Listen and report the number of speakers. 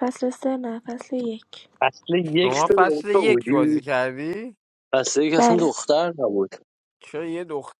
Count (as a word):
three